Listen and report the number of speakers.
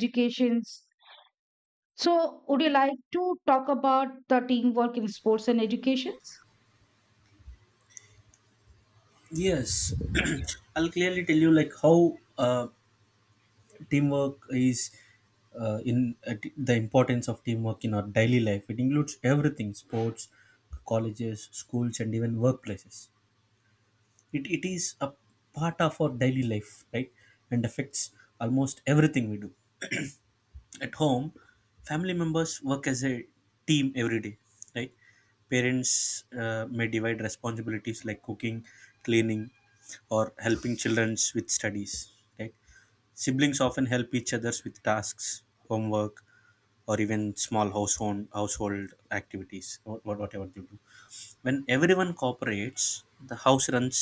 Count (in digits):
2